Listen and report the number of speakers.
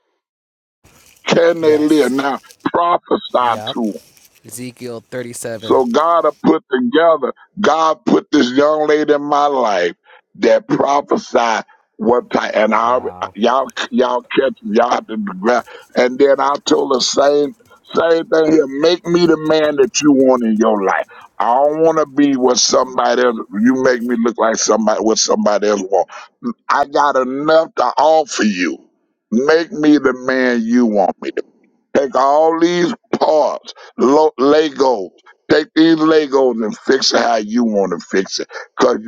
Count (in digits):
2